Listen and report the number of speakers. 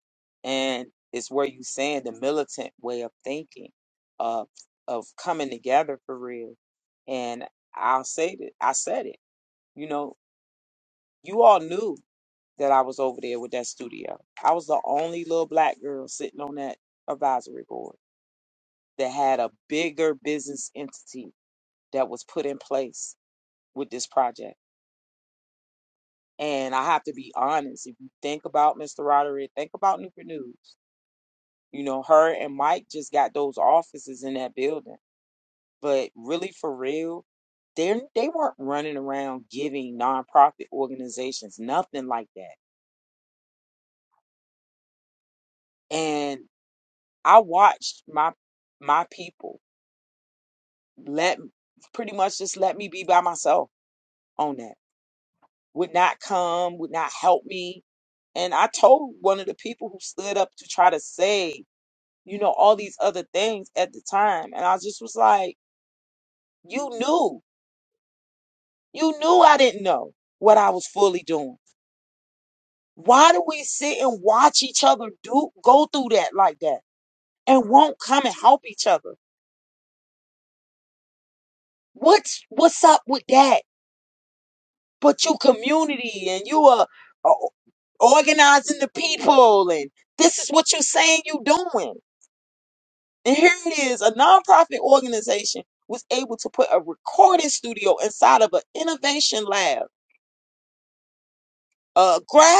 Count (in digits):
1